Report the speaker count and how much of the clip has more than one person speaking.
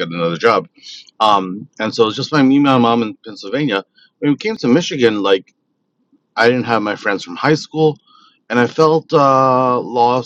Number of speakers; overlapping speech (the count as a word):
one, no overlap